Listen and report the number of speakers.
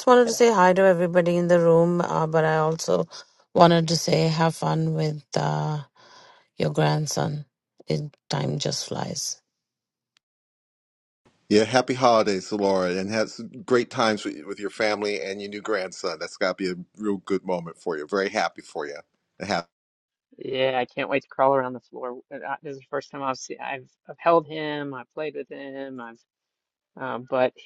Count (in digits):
3